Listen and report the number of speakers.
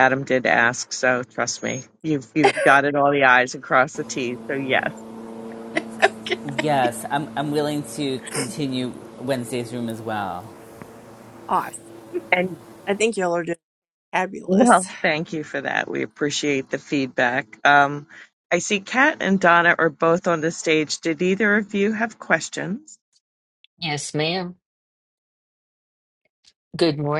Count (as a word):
four